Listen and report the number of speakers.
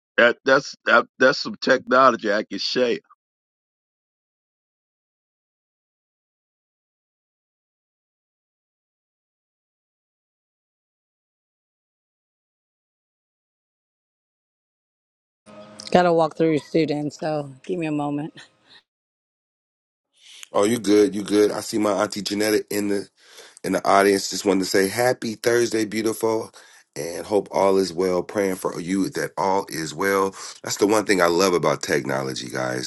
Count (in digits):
3